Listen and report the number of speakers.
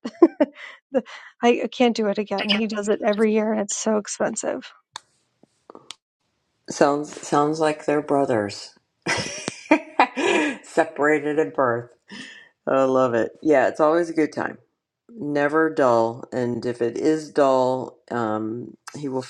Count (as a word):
two